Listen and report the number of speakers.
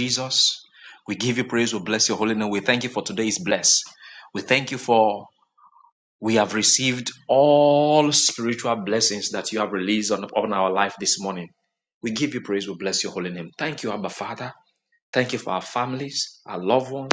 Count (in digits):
1